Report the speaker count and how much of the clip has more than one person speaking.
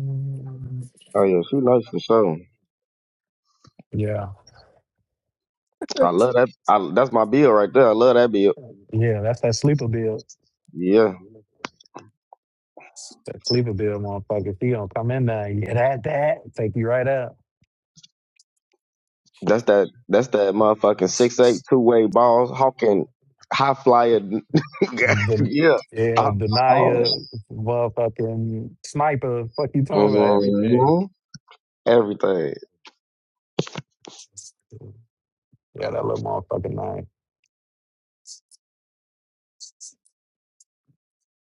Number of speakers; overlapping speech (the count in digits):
2, about 4%